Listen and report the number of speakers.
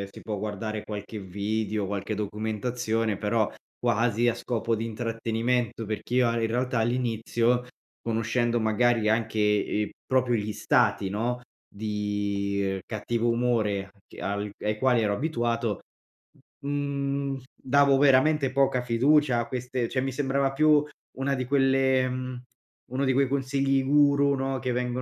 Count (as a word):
one